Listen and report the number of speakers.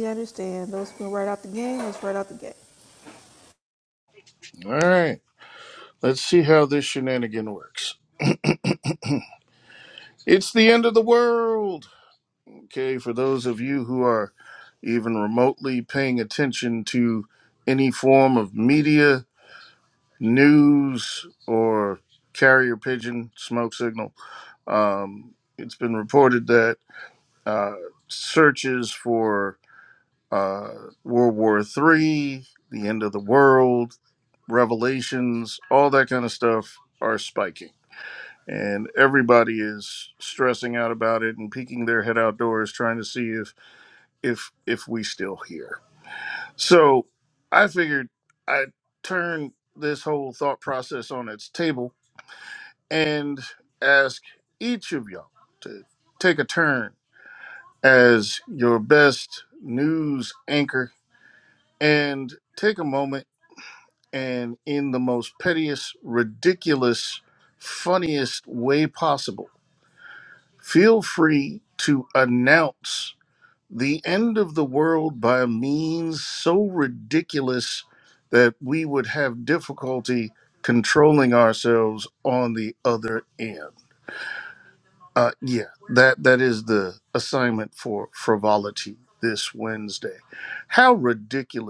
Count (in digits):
2